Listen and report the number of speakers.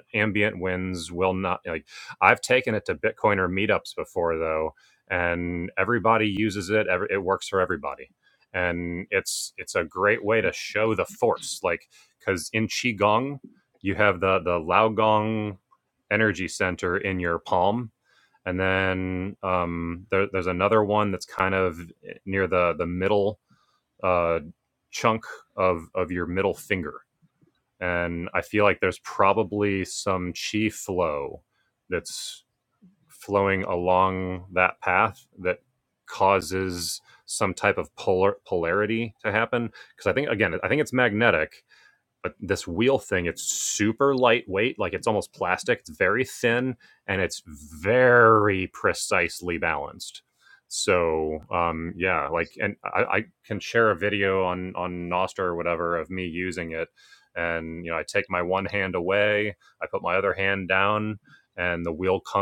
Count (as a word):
one